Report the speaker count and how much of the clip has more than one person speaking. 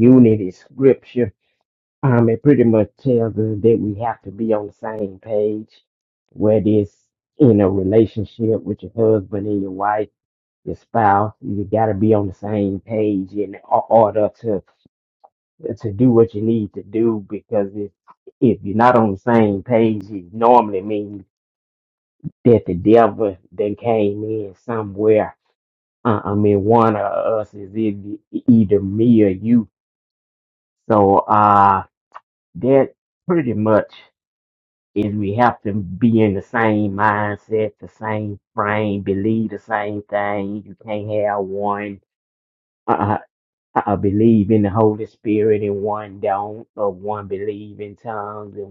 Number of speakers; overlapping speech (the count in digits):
1, no overlap